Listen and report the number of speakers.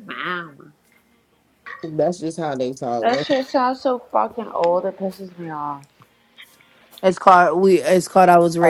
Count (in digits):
3